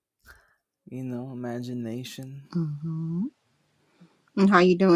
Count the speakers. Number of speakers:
two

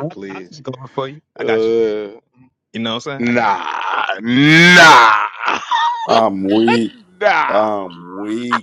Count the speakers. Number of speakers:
three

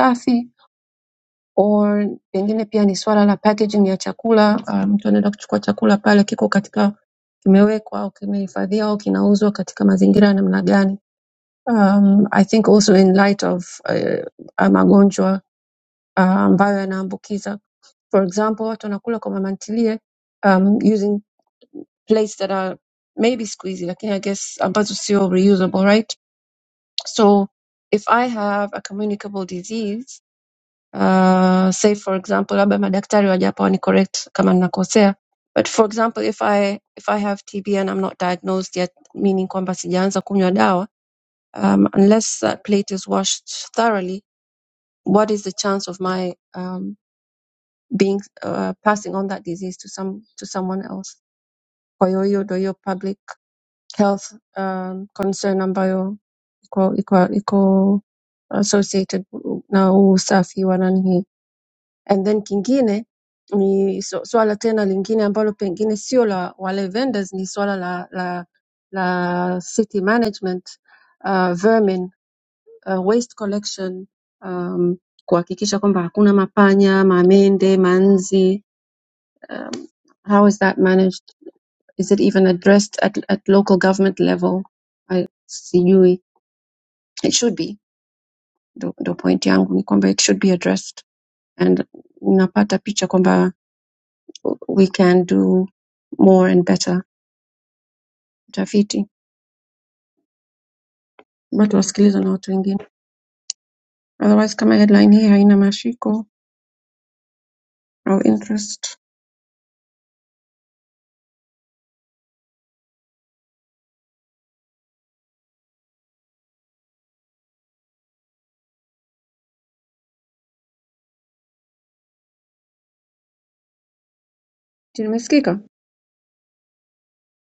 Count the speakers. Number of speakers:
one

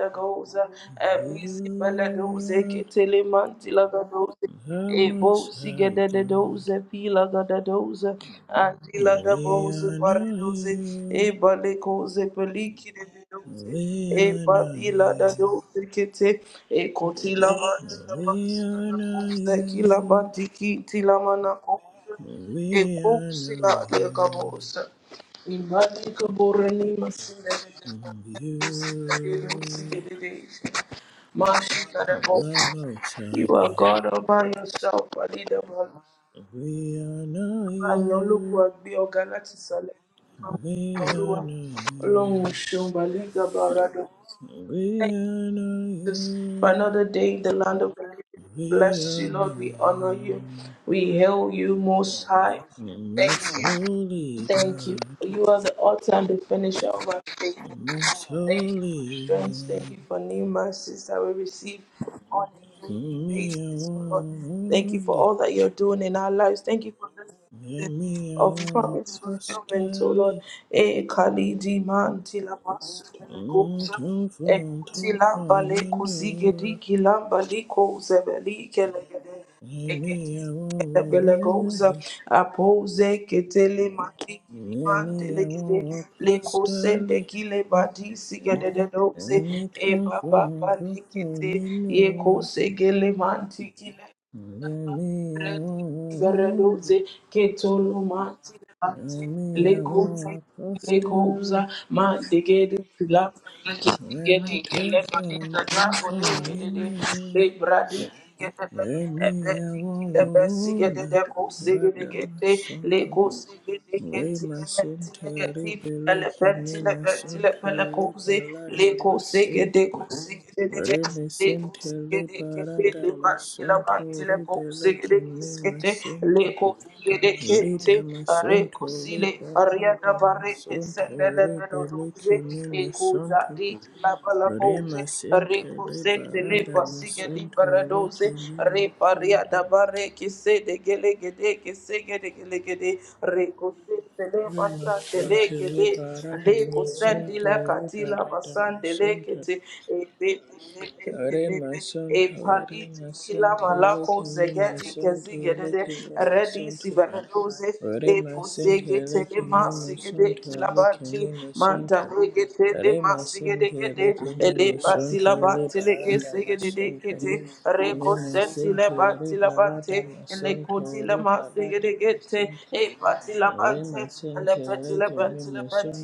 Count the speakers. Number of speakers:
two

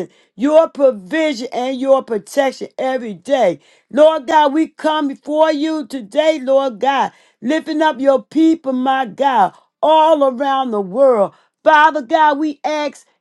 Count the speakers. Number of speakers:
one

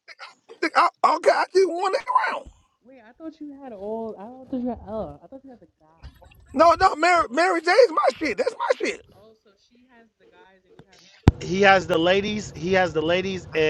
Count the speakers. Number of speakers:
three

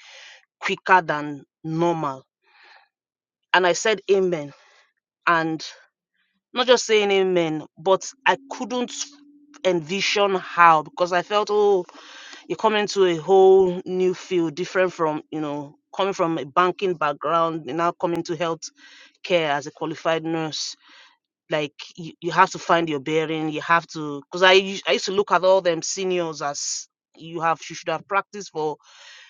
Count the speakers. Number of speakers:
one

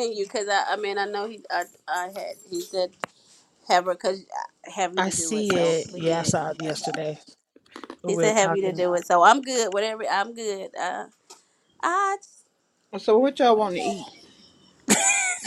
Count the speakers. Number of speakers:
three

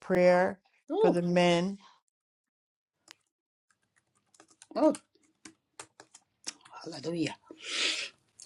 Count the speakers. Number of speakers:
two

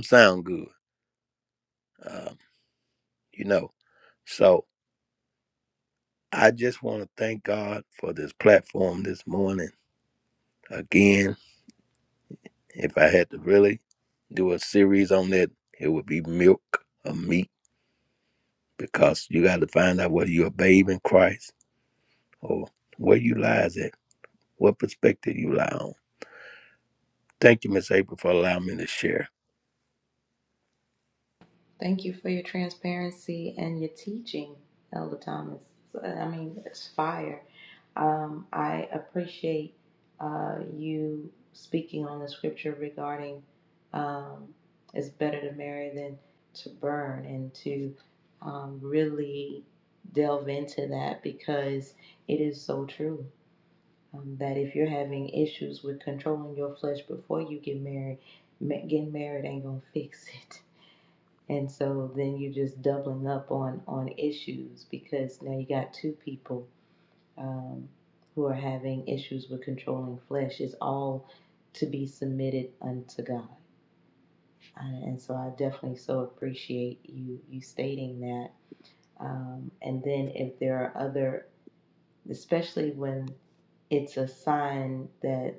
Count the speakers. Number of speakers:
two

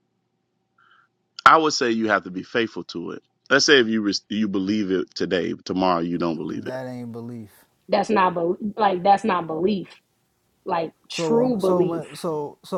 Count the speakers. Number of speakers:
three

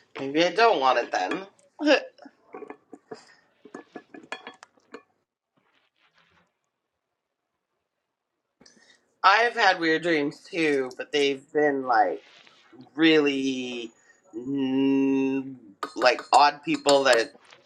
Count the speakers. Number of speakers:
one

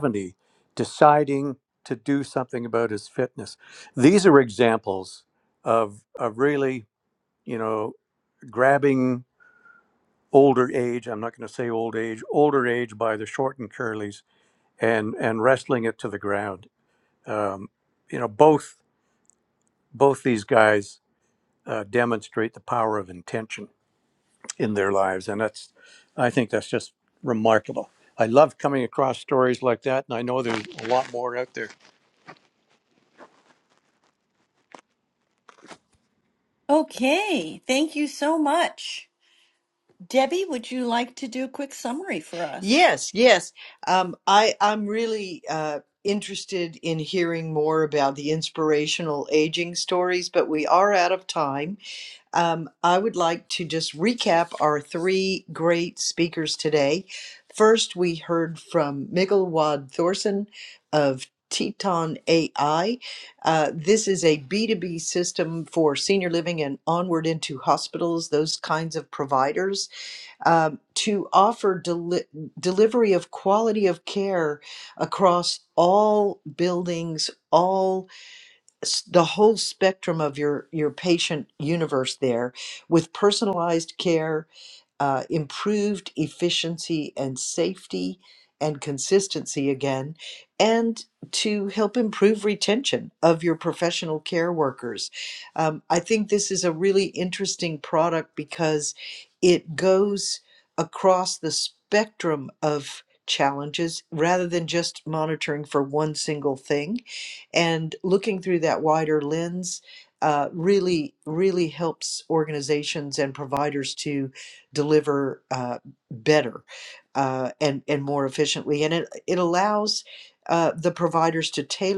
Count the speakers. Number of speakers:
three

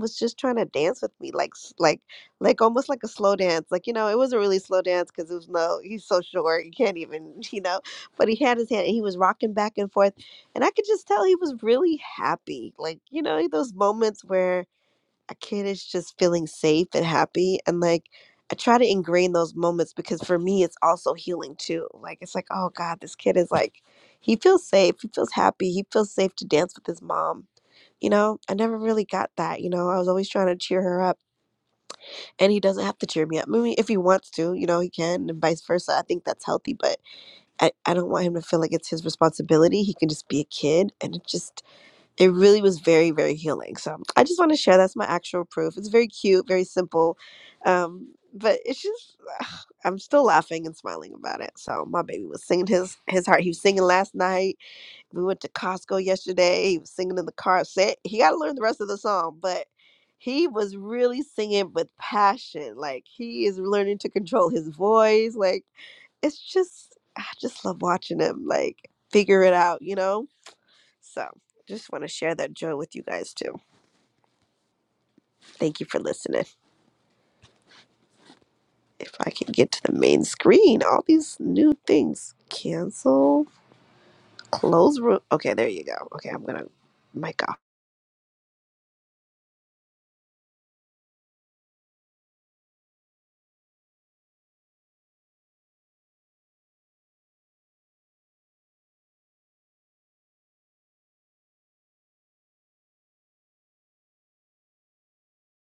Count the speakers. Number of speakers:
one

